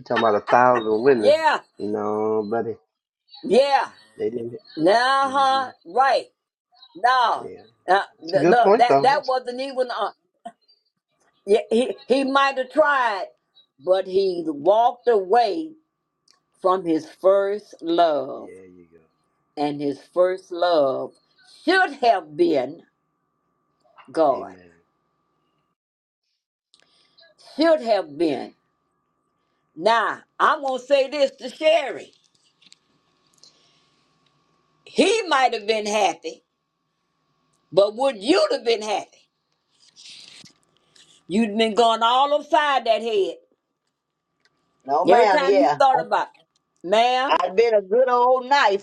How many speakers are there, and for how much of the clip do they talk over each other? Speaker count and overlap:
3, about 6%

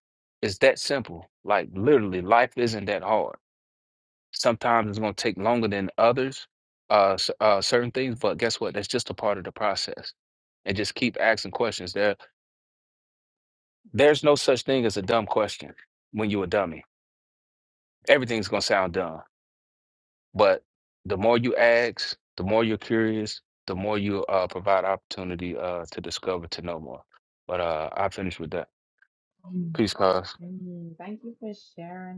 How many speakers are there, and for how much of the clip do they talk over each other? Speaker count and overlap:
2, under 1%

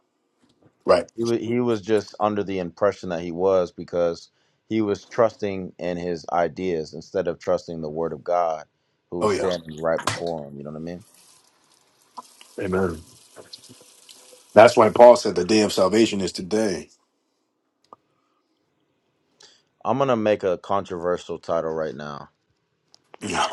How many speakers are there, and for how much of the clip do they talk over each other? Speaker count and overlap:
2, about 1%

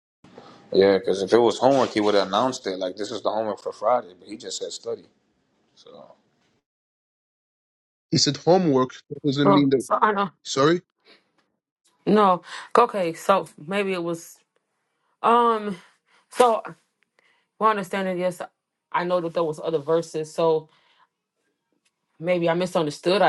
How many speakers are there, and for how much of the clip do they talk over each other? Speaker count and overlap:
3, about 2%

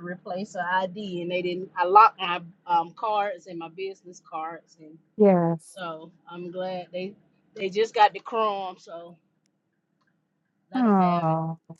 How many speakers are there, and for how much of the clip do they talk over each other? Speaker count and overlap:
2, about 5%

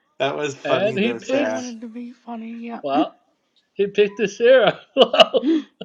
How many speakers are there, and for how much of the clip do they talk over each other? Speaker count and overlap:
3, about 13%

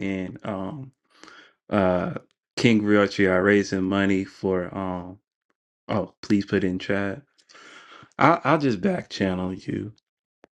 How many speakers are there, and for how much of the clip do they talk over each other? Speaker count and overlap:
1, no overlap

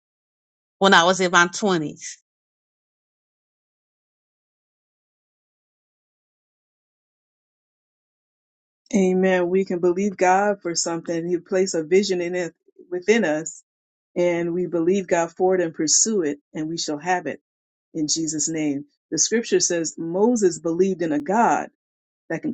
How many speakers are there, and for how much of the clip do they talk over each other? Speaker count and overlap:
2, no overlap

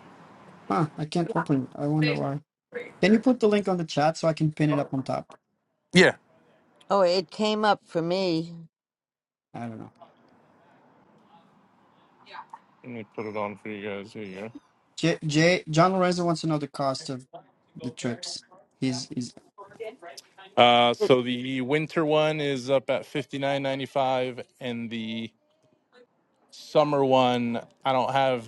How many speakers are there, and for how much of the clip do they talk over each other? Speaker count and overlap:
3, under 1%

